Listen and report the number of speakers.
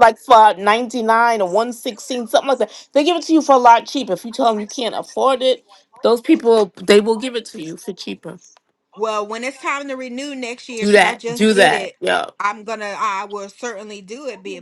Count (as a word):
two